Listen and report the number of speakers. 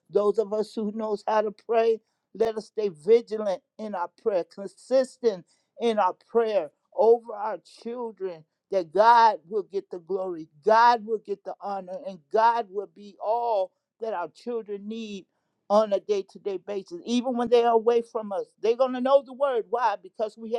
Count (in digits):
1